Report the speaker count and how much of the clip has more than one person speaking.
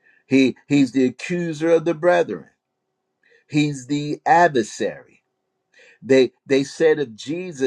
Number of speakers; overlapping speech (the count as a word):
one, no overlap